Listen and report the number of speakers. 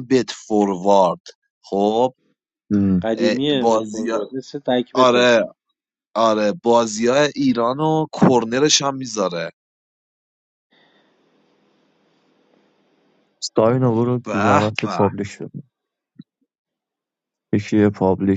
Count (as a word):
three